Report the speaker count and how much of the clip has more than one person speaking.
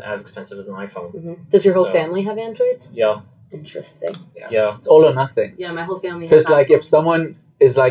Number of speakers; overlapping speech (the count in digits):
3, about 14%